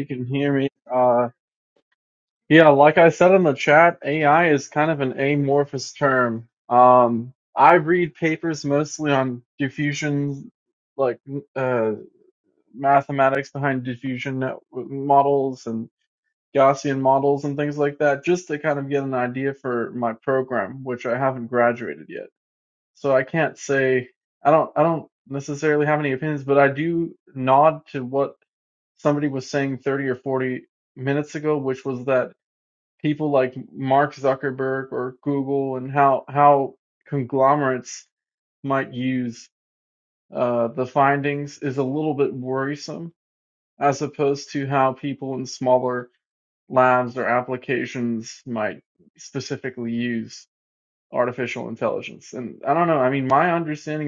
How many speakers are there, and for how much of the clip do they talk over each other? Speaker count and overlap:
1, no overlap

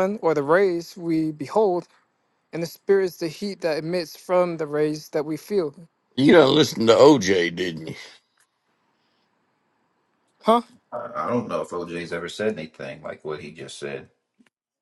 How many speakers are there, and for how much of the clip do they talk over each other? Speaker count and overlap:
3, no overlap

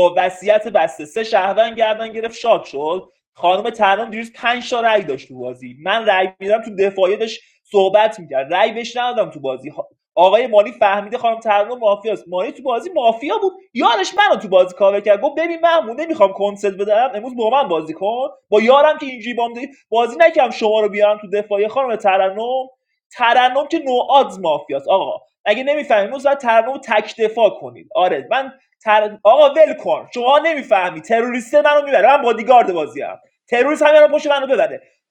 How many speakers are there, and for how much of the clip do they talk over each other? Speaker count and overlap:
1, no overlap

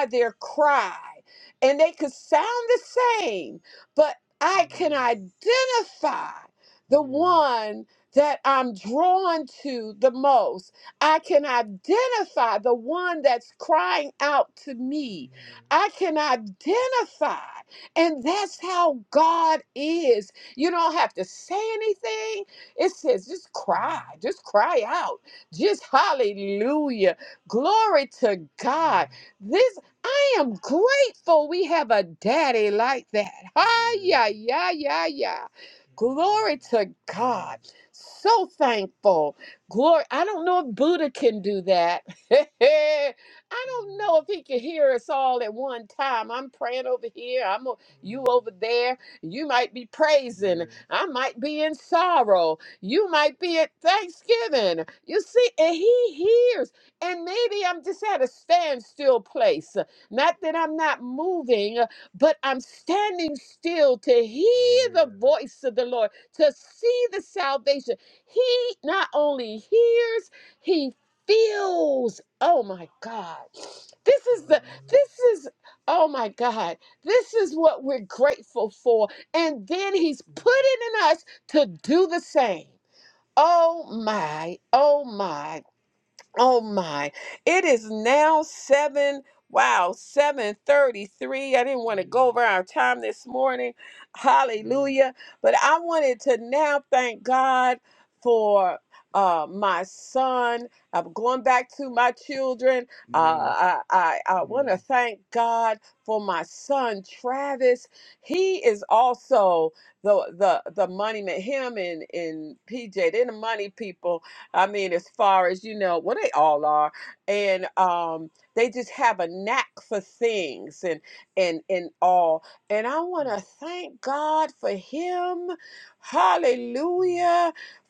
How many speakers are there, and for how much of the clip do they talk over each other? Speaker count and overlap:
1, no overlap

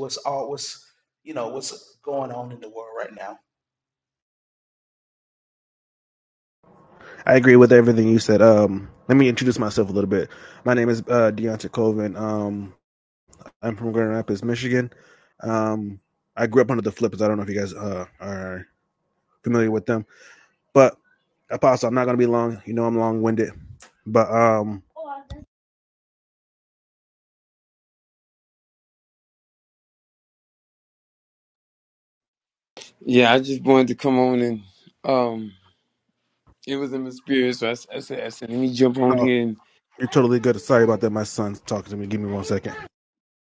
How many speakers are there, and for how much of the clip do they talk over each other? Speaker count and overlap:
3, about 1%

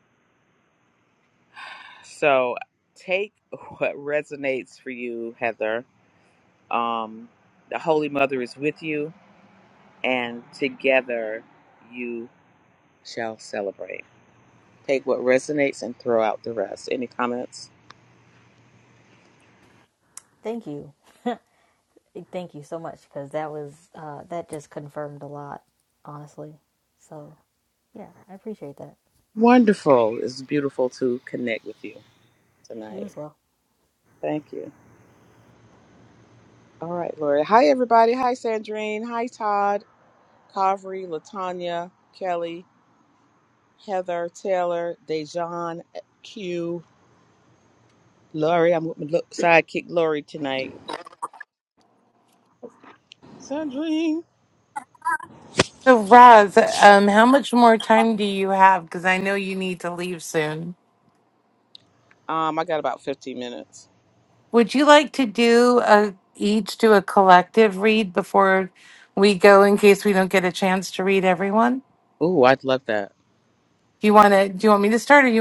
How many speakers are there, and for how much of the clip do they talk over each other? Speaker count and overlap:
3, under 1%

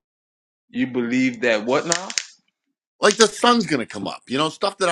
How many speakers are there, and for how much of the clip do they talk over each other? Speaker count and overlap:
2, no overlap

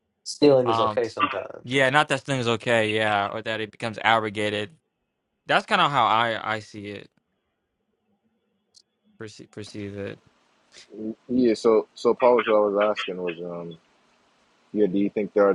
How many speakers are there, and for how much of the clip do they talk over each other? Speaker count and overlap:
3, about 2%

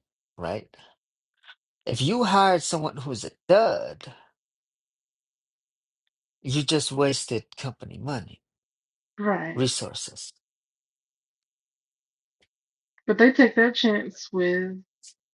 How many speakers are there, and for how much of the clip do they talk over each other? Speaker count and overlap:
2, about 1%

